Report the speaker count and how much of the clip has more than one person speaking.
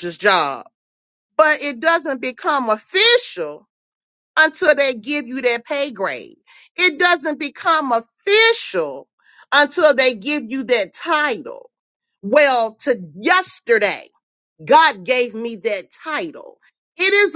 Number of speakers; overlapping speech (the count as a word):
one, no overlap